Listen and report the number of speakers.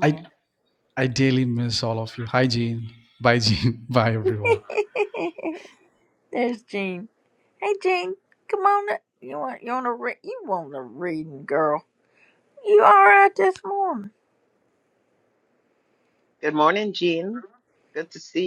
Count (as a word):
three